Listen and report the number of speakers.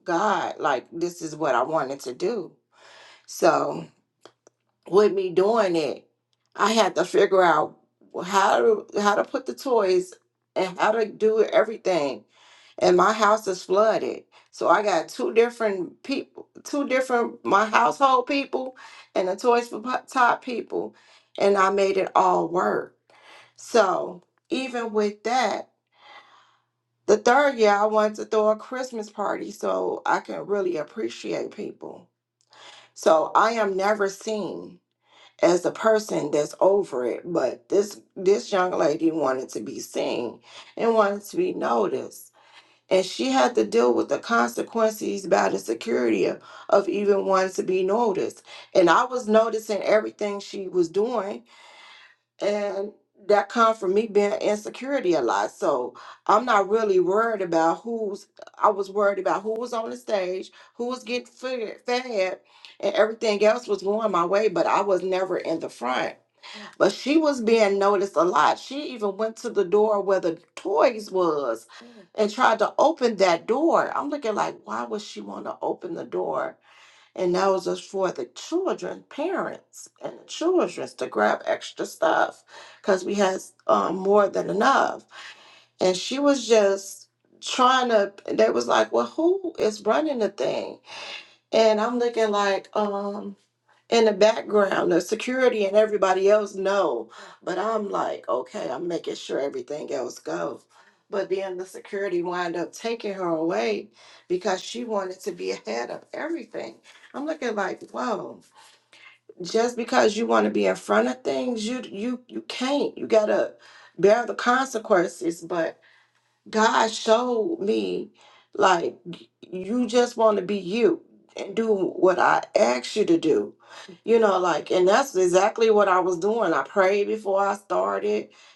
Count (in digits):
1